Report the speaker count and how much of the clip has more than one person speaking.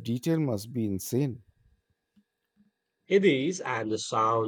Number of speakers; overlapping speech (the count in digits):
2, no overlap